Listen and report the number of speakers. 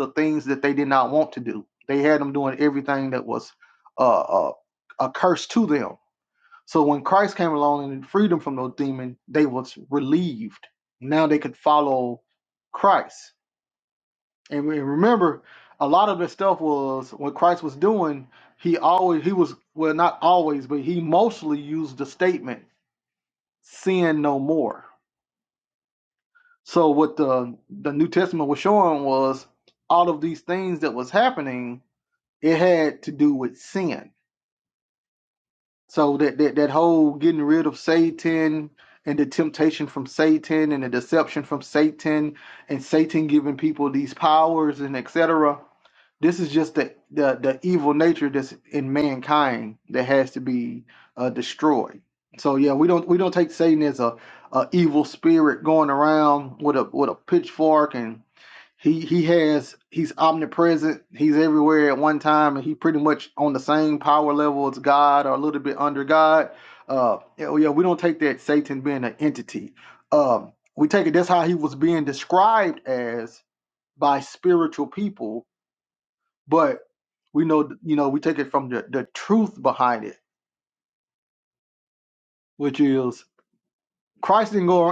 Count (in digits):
1